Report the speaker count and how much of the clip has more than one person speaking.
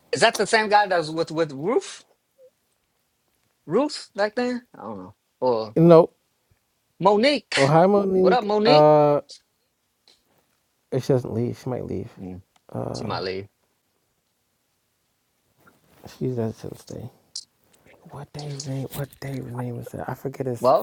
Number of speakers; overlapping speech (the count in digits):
2, about 5%